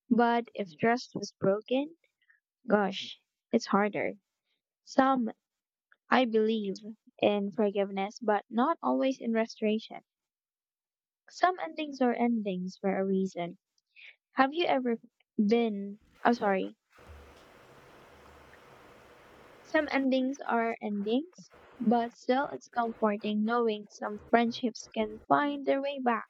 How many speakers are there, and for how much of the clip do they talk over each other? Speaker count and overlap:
1, no overlap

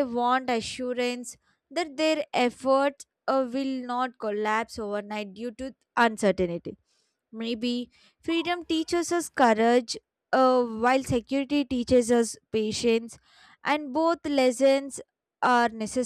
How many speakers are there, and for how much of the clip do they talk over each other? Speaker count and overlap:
1, no overlap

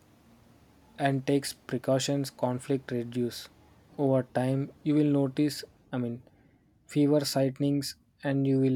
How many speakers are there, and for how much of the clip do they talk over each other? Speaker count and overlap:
1, no overlap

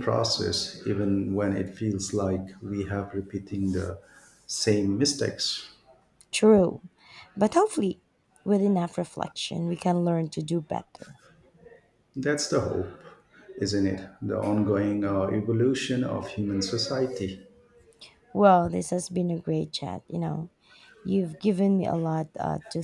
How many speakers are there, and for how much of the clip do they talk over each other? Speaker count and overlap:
2, no overlap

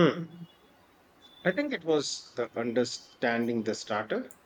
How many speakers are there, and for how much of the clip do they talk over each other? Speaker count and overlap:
1, no overlap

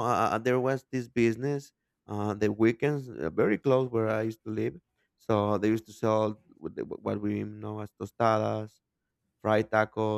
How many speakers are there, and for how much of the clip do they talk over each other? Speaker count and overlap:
1, no overlap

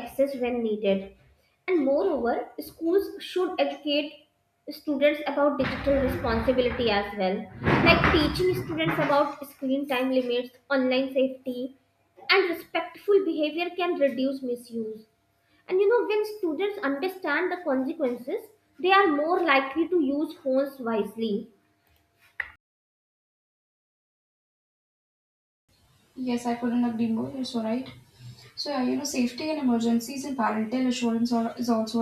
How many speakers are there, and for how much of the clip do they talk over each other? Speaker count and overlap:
2, no overlap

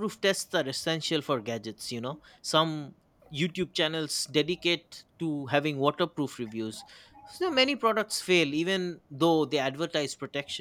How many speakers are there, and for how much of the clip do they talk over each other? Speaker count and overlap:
1, no overlap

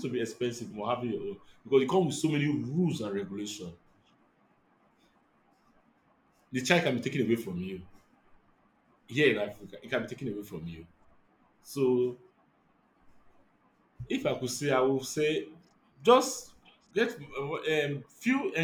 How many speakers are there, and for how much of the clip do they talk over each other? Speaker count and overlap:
1, no overlap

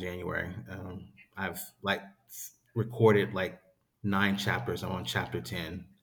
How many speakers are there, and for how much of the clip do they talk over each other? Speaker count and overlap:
1, no overlap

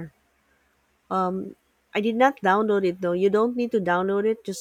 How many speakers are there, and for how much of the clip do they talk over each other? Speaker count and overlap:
1, no overlap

